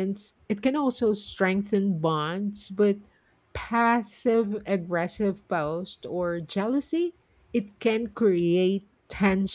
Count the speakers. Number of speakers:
one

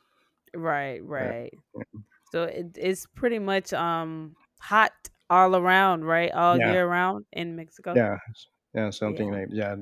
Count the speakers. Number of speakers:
two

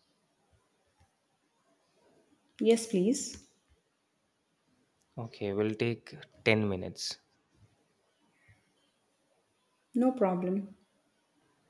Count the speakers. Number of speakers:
two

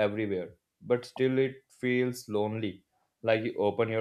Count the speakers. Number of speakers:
one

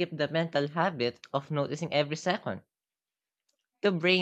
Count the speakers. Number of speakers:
one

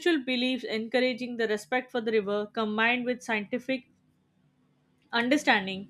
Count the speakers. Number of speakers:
one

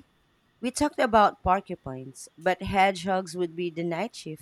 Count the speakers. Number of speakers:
one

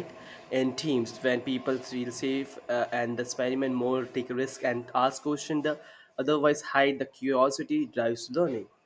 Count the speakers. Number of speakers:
one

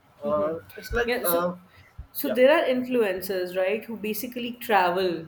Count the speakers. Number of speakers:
two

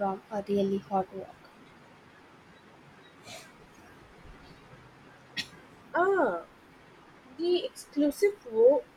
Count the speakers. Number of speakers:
two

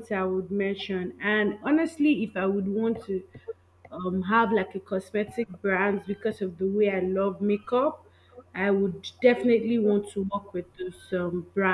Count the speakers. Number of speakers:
one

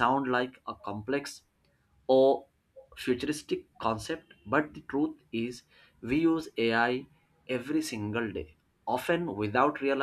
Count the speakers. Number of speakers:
one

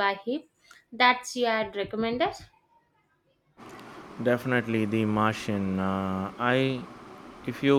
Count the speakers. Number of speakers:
two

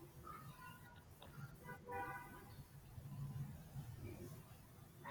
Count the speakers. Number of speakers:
zero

